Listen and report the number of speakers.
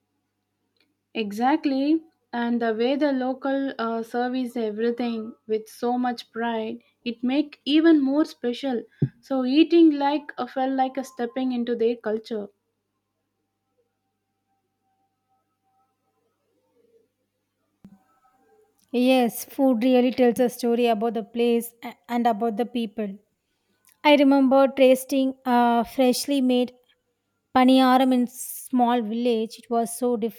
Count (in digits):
2